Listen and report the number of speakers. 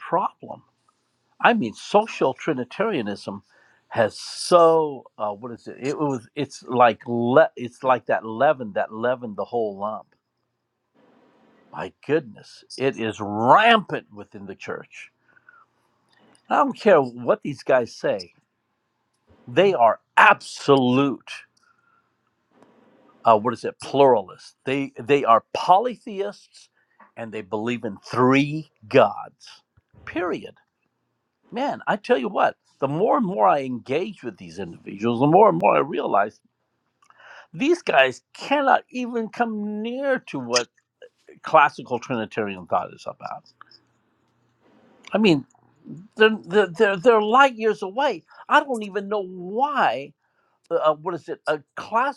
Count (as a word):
one